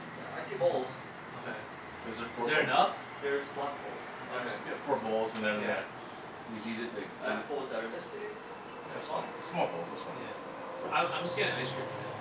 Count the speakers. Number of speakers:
3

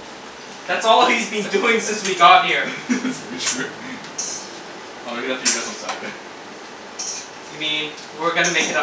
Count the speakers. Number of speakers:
2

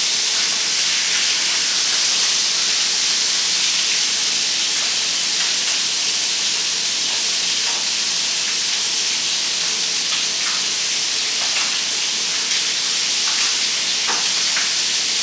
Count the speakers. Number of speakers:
0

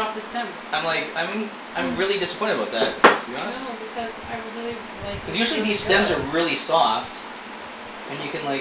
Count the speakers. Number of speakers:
2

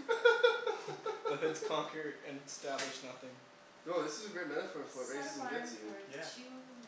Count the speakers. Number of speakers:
3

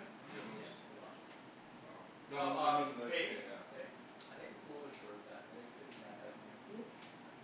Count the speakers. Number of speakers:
2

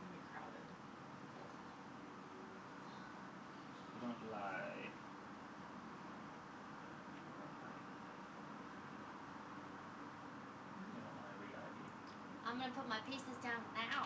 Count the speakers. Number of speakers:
2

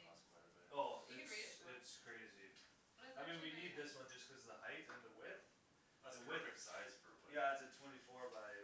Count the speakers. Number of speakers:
3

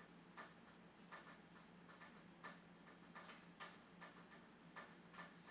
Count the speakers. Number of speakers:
0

